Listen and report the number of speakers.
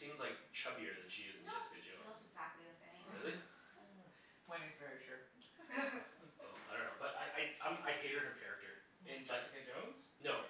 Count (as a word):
four